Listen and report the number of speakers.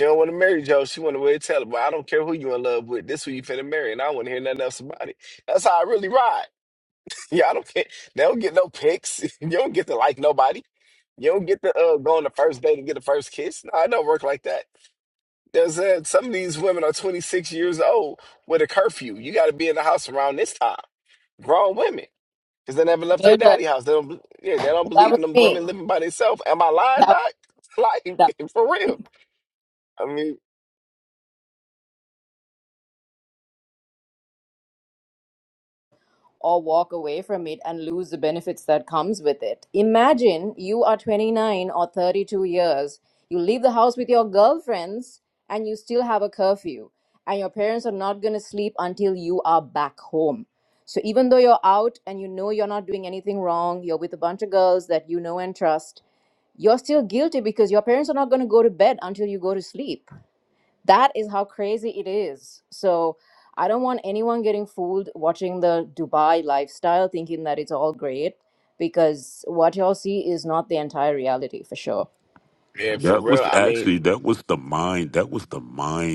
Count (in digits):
3